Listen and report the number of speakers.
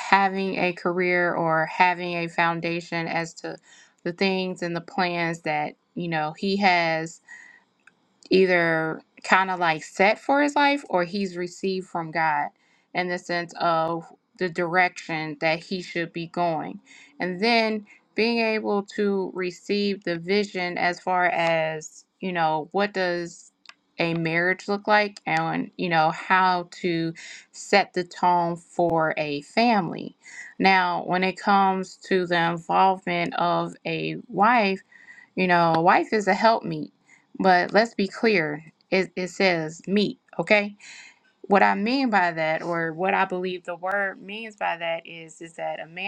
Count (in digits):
1